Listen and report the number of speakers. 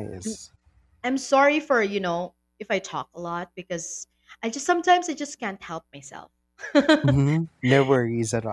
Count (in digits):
2